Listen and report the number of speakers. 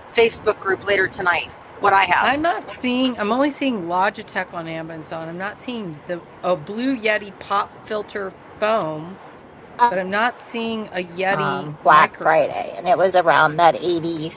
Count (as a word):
three